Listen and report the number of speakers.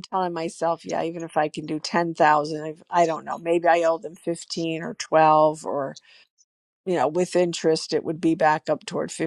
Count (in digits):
1